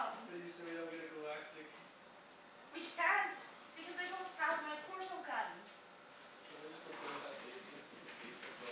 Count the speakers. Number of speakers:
2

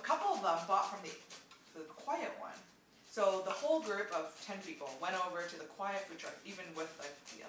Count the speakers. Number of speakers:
1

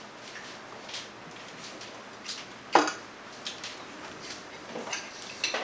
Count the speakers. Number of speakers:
0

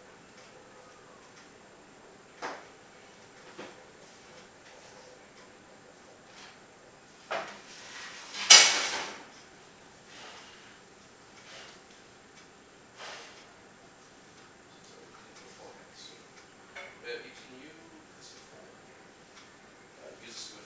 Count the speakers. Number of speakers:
1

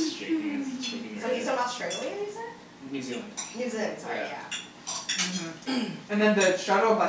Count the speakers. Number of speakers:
3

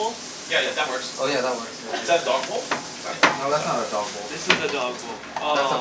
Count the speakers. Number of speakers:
3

